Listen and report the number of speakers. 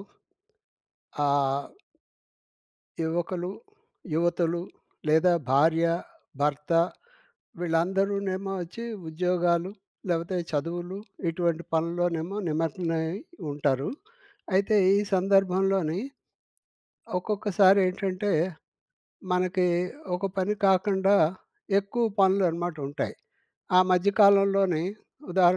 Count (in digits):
1